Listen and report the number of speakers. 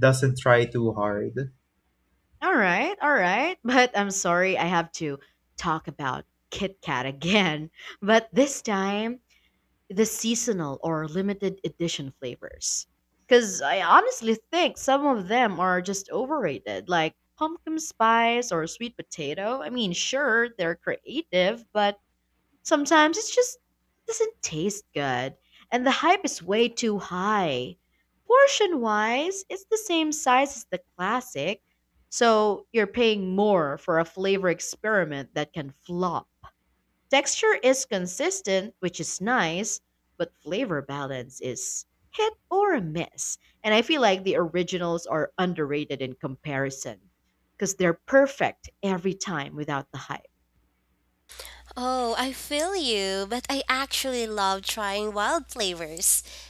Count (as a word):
three